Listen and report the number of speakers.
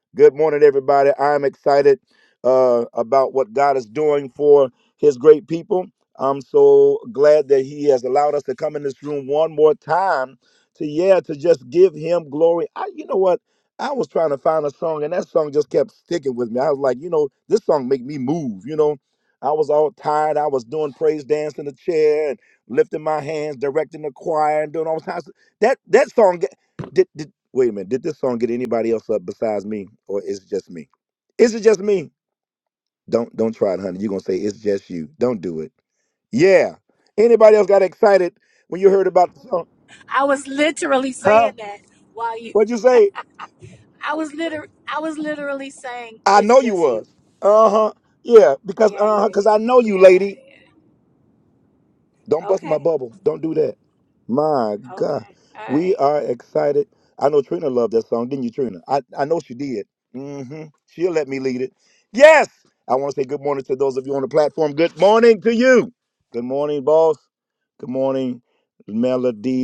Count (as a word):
two